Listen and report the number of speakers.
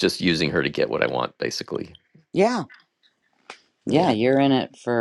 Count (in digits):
2